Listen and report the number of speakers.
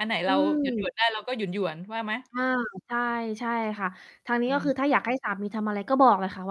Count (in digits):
2